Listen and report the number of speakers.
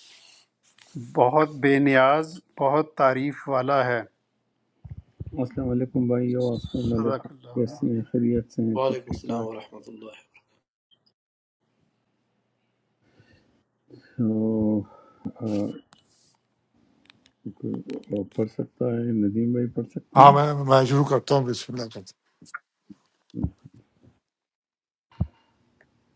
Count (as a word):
four